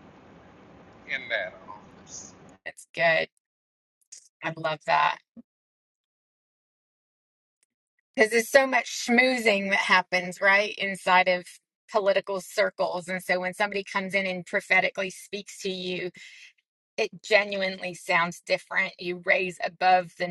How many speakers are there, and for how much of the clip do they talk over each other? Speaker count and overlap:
2, no overlap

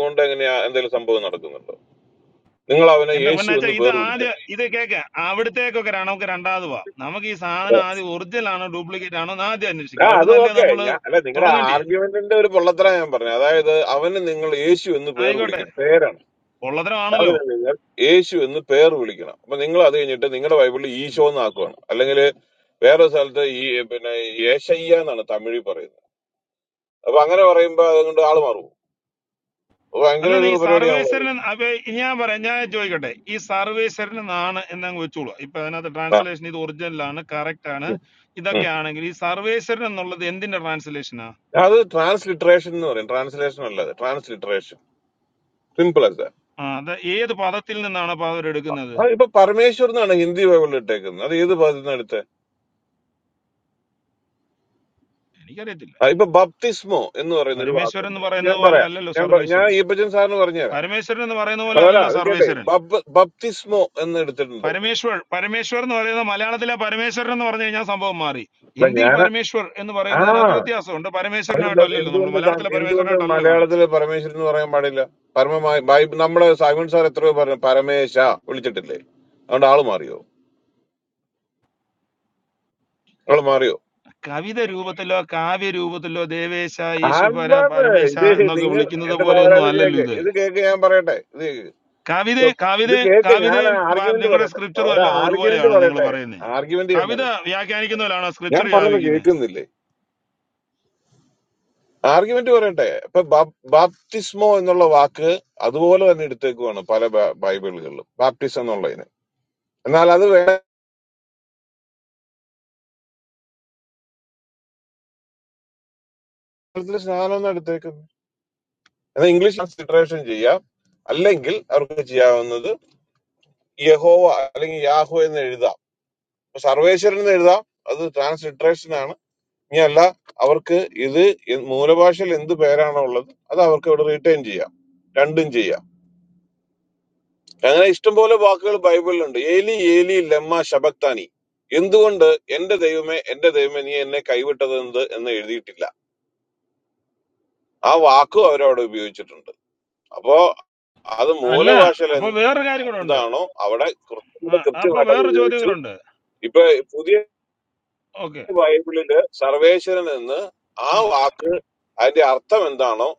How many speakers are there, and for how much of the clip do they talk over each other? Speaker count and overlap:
2, about 12%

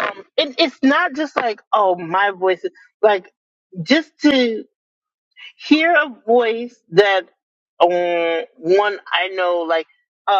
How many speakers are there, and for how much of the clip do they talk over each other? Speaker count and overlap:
1, no overlap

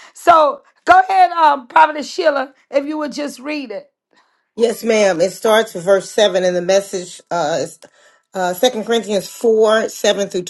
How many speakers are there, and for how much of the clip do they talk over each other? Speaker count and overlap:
2, no overlap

